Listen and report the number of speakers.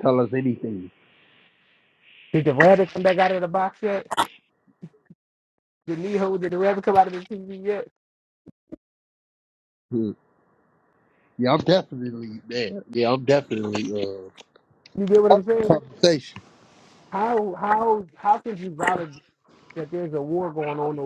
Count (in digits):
2